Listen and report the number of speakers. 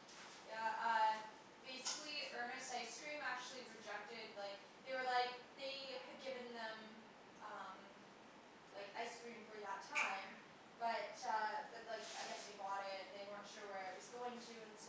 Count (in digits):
1